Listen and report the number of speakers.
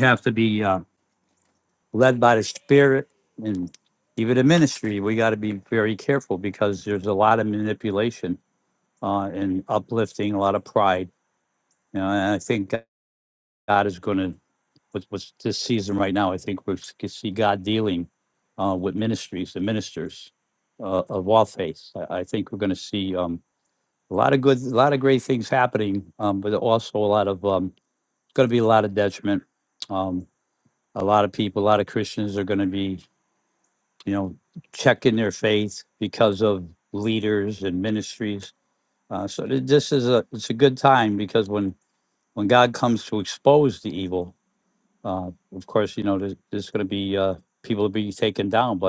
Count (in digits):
1